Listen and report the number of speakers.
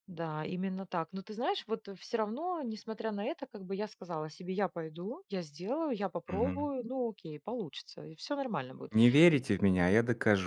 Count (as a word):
two